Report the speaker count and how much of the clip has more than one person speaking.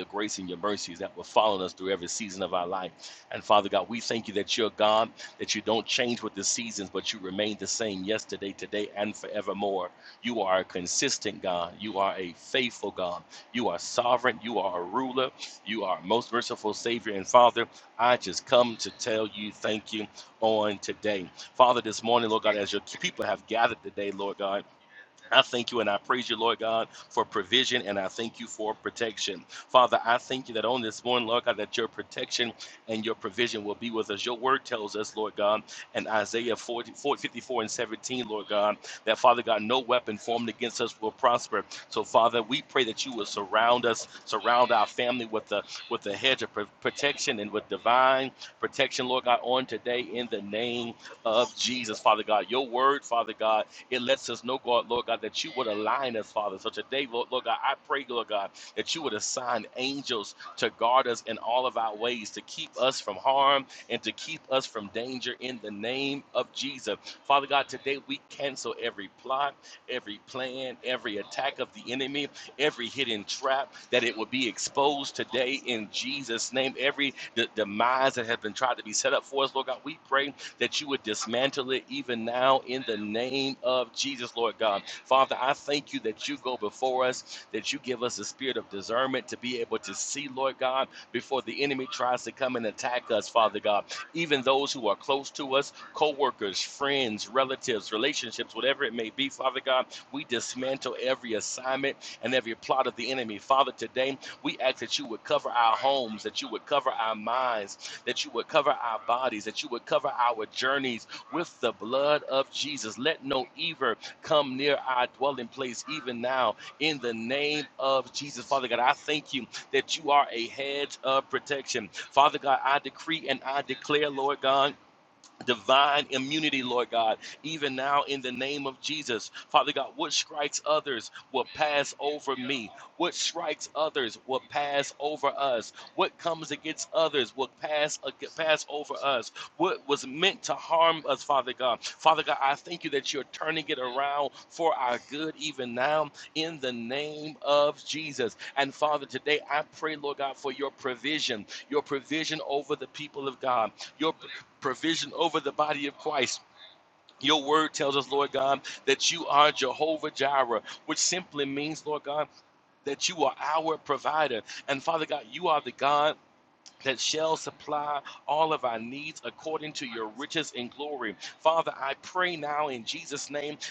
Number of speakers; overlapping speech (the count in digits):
1, no overlap